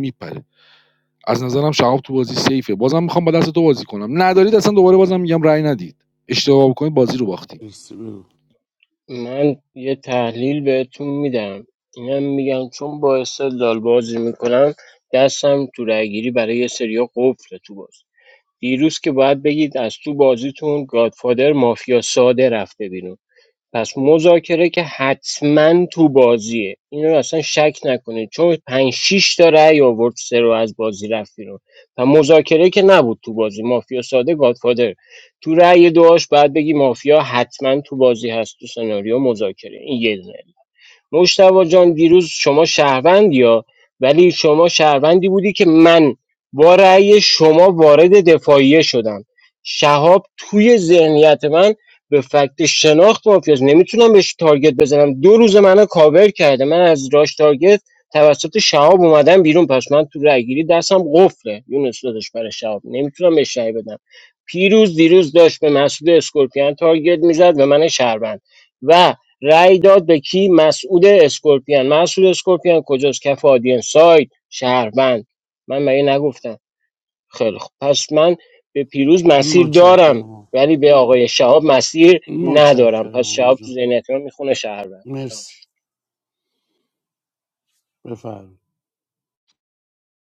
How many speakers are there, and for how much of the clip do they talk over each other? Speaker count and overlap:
3, about 3%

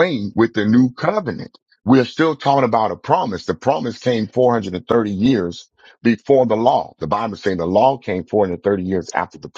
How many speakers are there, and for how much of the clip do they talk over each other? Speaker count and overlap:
1, no overlap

